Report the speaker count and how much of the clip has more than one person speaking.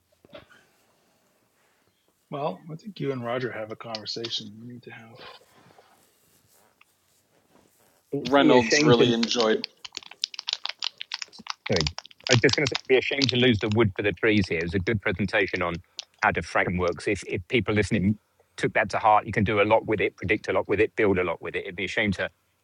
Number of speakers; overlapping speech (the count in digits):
3, about 4%